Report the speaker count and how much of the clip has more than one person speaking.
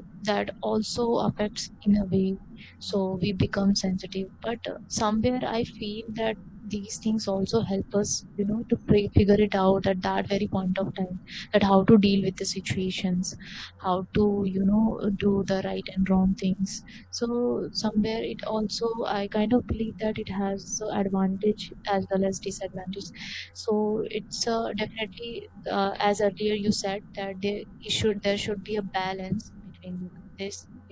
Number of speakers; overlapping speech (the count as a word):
one, no overlap